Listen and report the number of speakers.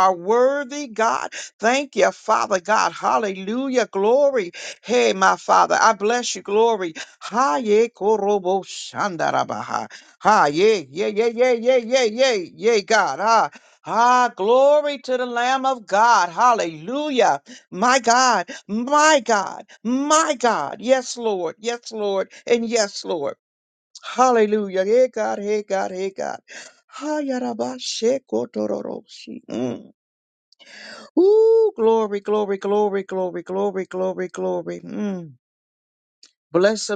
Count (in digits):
1